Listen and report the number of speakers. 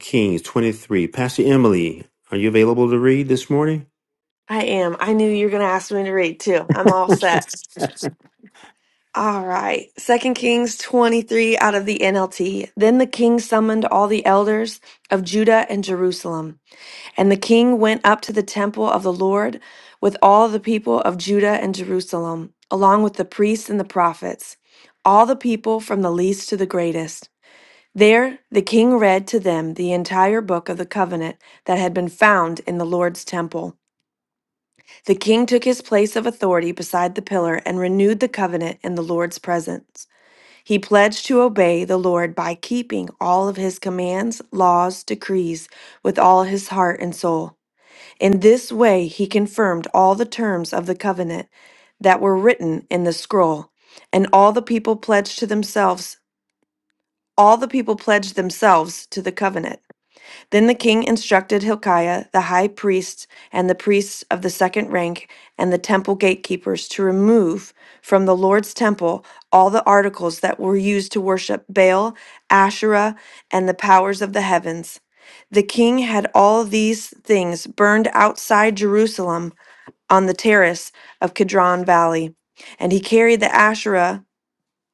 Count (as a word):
two